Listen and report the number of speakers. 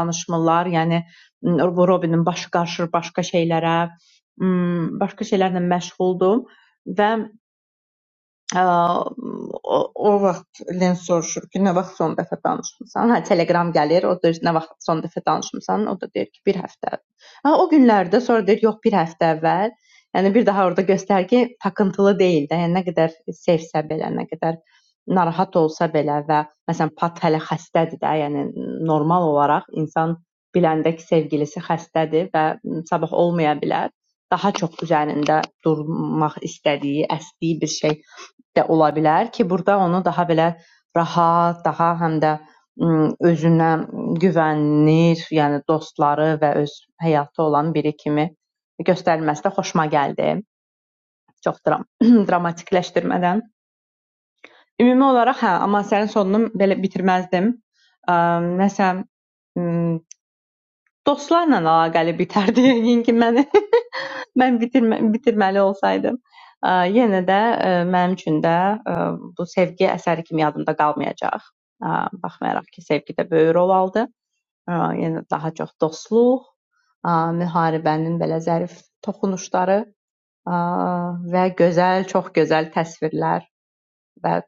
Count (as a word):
one